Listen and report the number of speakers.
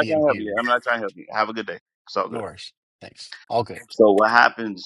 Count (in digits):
2